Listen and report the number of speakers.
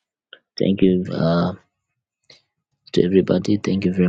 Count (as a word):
one